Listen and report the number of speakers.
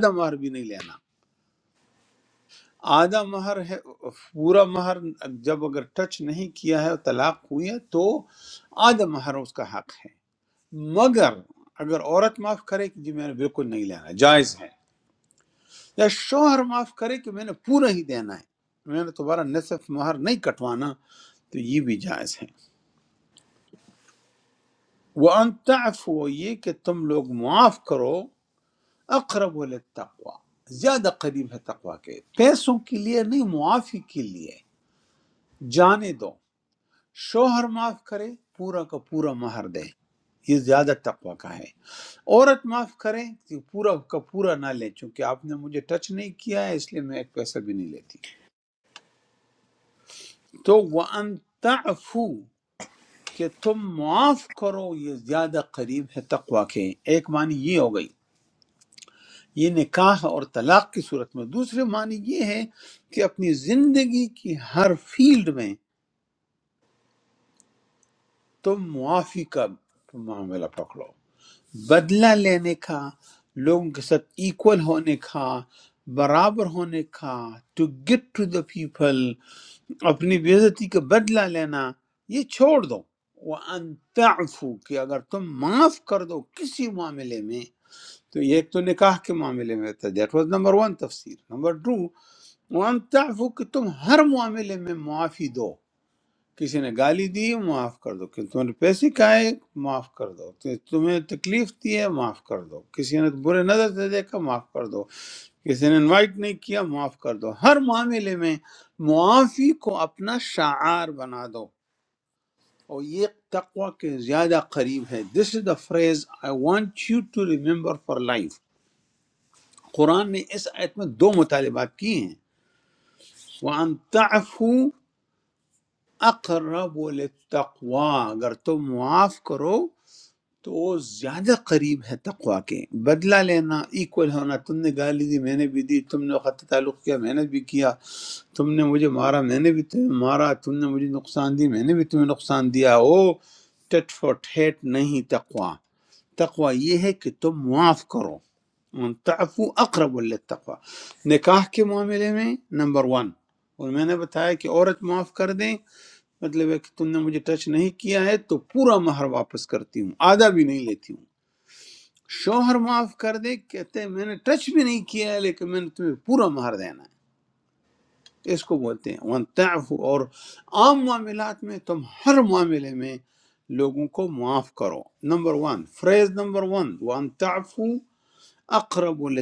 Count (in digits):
1